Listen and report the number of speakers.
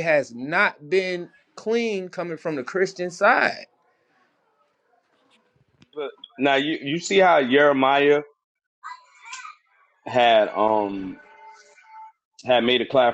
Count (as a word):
two